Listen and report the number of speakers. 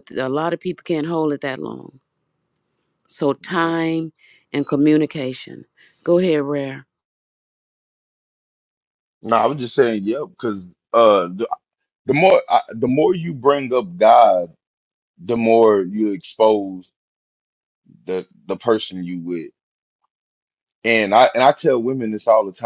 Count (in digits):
2